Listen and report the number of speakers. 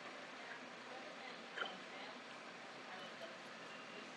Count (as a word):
zero